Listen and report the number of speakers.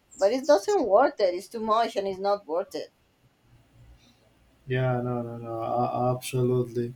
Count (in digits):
2